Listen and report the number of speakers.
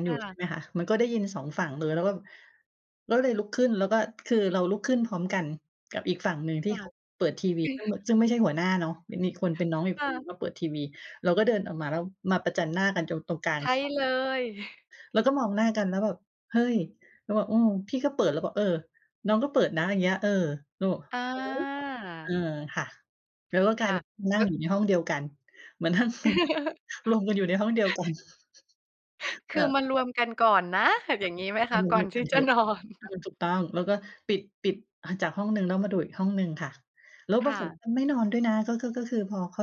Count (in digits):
2